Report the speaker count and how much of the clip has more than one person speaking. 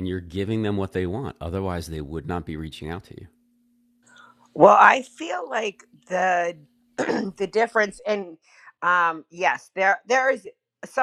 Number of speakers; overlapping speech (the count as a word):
two, no overlap